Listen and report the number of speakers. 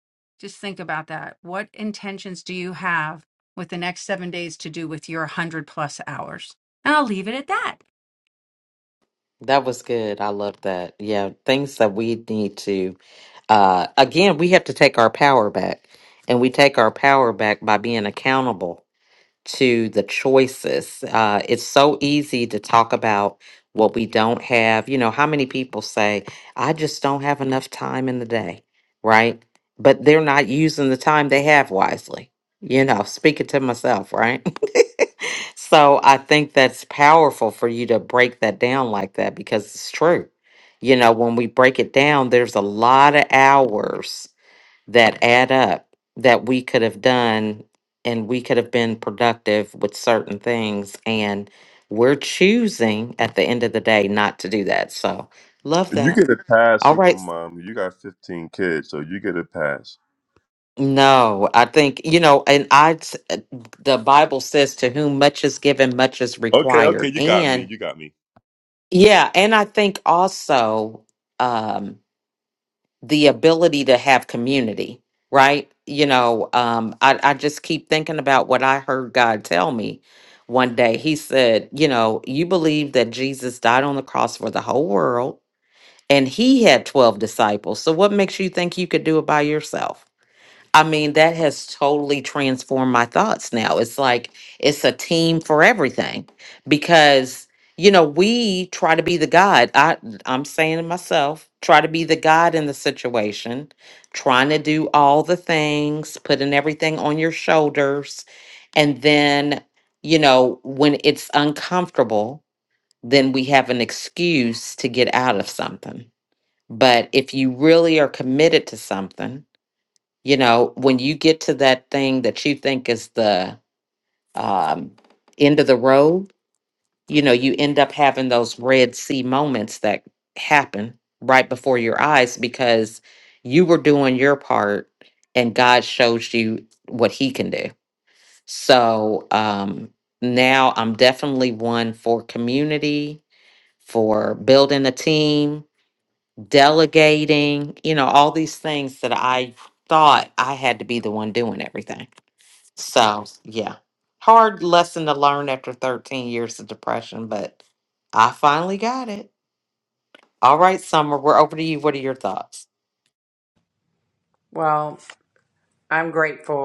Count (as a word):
four